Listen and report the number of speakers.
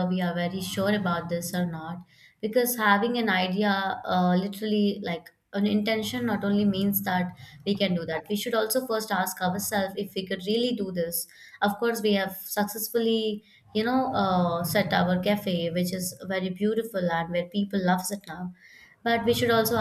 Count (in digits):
1